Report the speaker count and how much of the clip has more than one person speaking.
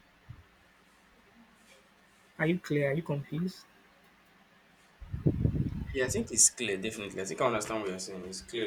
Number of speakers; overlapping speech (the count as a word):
two, no overlap